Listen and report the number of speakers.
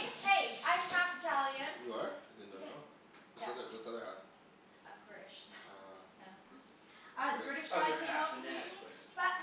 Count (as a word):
three